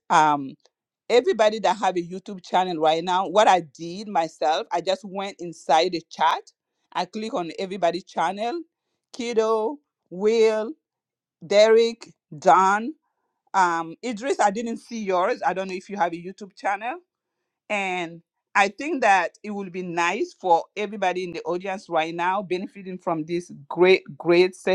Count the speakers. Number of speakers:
1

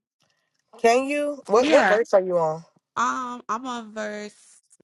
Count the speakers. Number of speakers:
2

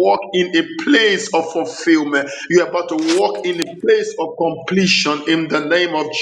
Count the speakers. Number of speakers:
1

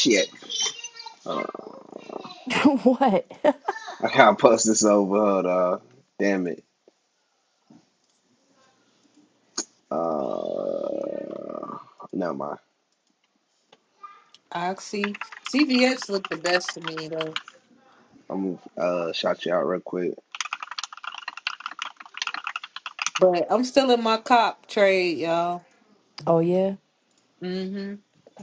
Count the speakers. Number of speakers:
3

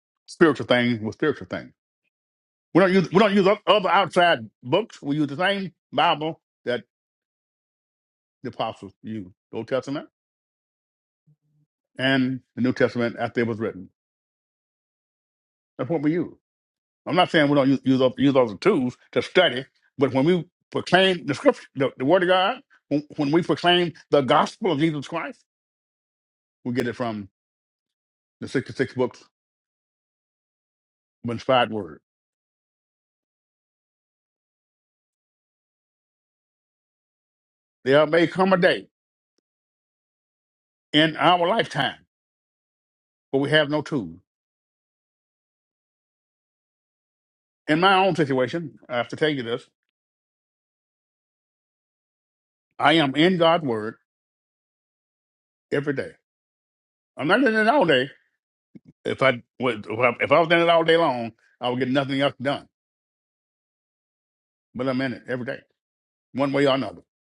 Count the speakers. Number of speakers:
1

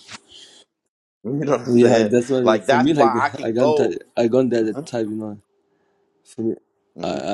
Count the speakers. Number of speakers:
2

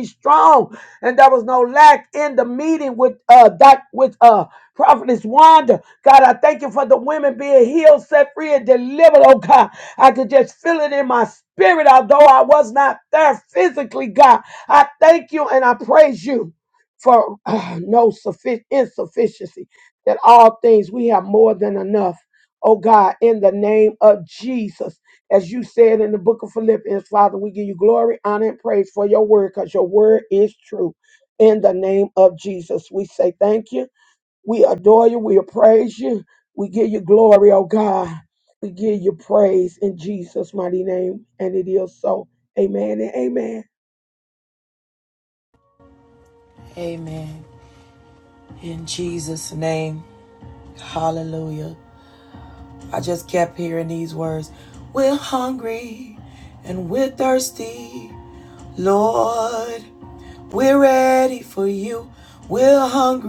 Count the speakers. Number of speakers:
2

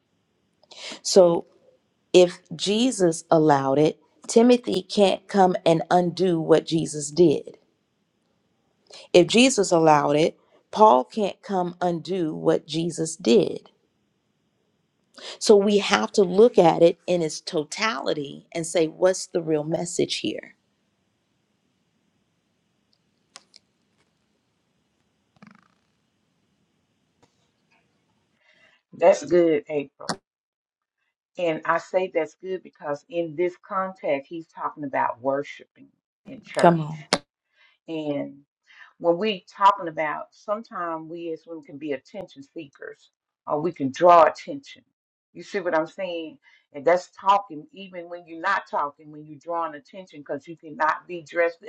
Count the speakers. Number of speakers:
2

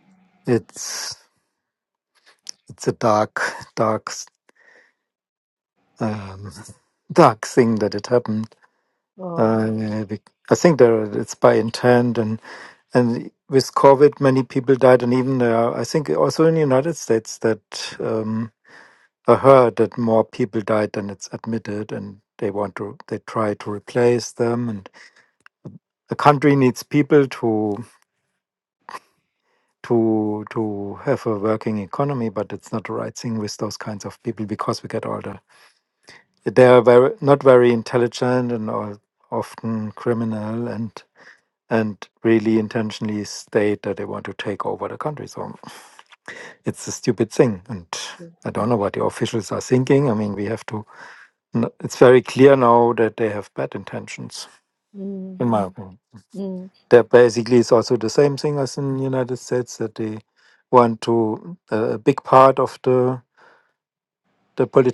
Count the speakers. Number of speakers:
2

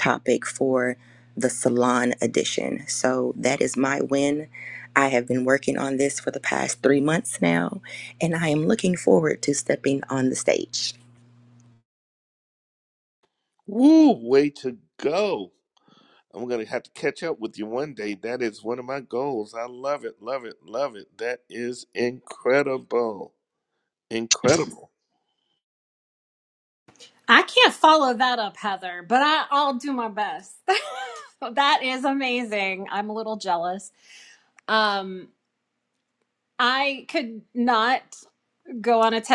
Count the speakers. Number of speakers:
3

